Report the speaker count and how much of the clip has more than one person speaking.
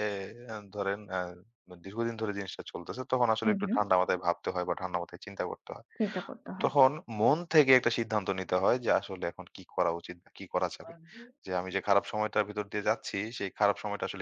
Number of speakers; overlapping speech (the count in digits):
2, about 4%